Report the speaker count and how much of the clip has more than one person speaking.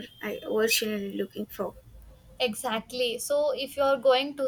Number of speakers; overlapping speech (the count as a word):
two, no overlap